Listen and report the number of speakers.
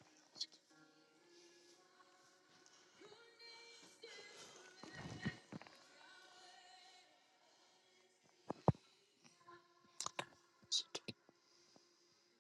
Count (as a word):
zero